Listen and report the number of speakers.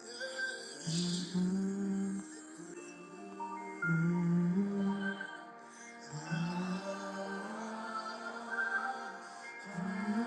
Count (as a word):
zero